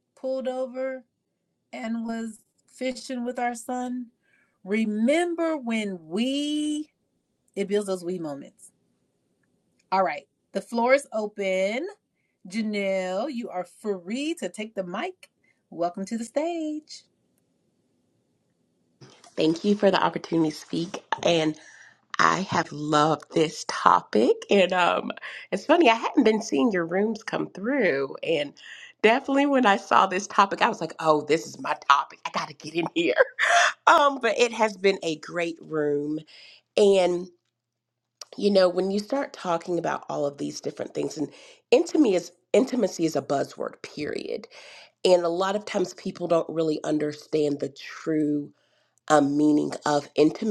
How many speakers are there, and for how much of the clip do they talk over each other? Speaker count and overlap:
2, no overlap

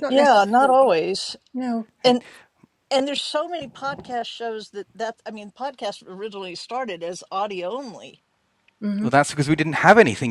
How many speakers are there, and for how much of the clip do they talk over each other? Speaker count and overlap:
3, about 8%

